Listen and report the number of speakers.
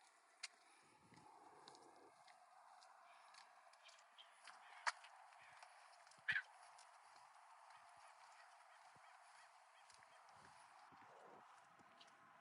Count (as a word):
zero